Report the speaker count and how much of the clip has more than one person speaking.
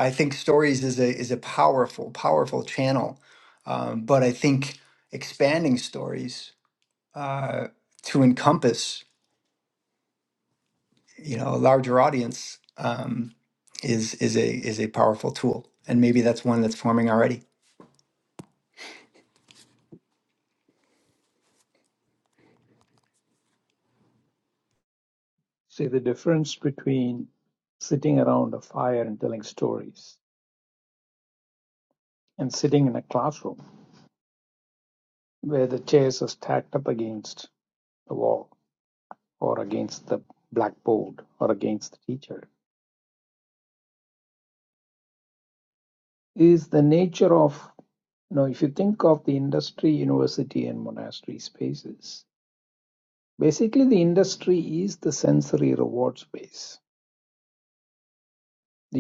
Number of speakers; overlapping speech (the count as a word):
two, no overlap